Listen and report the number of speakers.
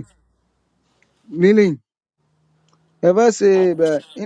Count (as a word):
one